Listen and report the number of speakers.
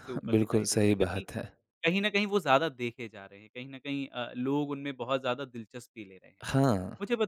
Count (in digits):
2